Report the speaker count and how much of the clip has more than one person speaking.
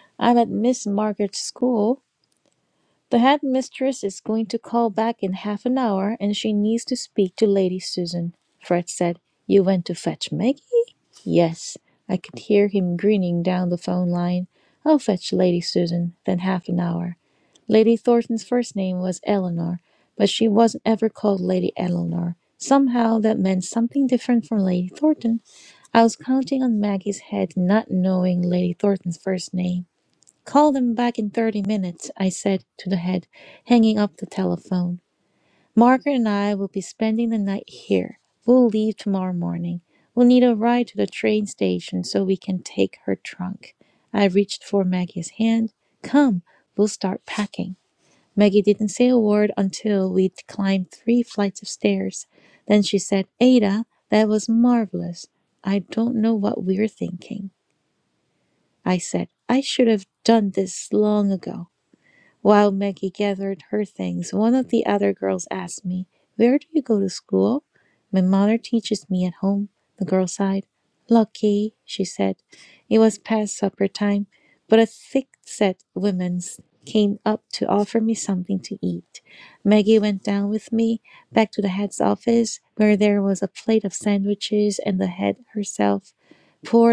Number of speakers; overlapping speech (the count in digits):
1, no overlap